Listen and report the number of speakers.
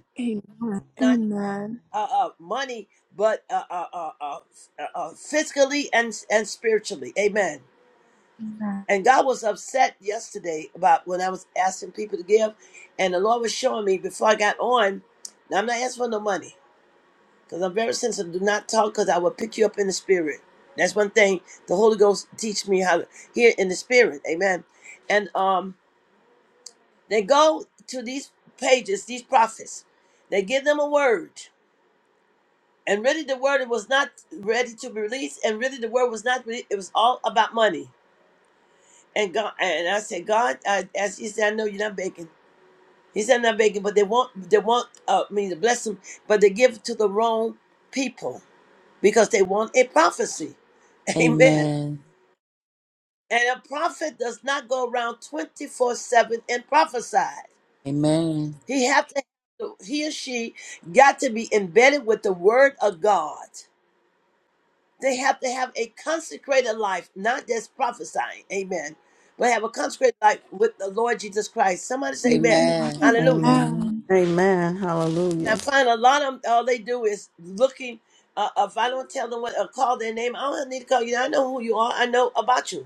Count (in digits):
4